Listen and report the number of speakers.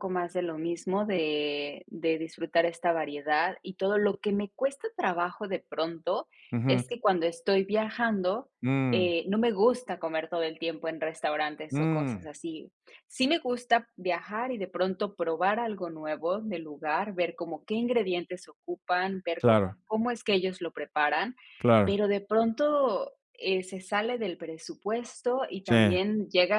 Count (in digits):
2